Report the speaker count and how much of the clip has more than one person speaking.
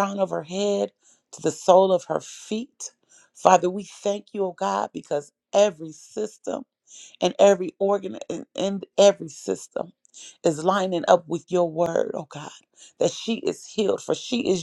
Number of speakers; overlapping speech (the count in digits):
1, no overlap